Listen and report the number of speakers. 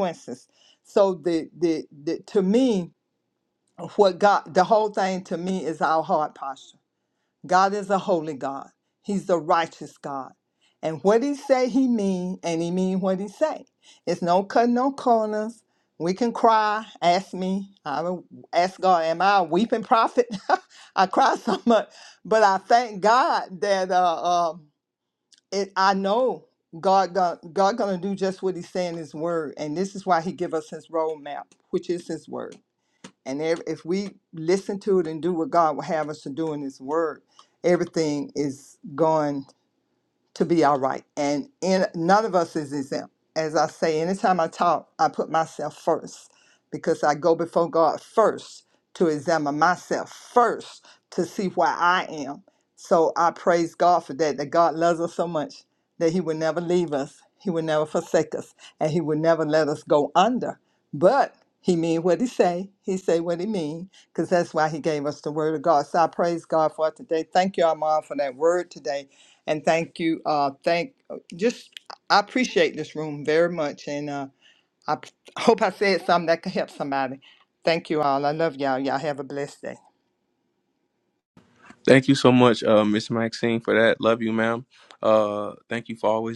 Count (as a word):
two